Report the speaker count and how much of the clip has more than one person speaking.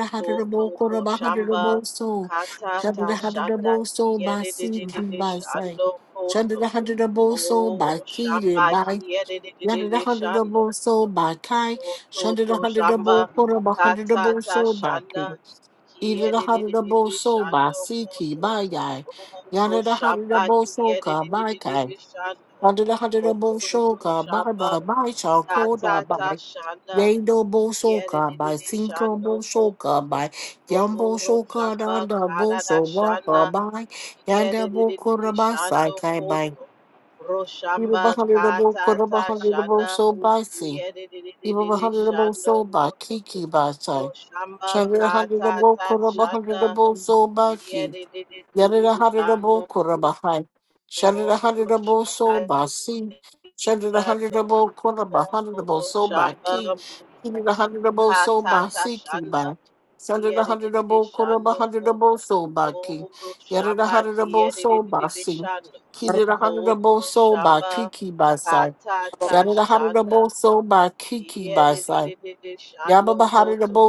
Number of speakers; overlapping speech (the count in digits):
2, about 61%